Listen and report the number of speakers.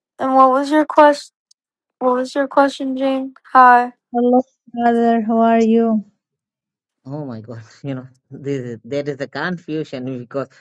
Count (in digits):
3